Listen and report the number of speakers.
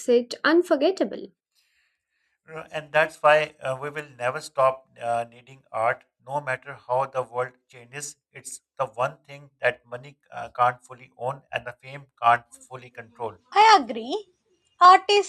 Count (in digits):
3